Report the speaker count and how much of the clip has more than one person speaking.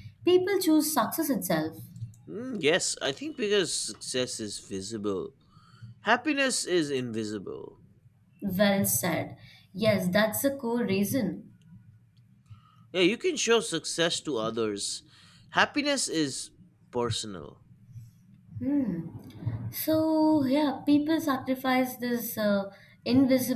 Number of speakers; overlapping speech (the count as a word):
two, no overlap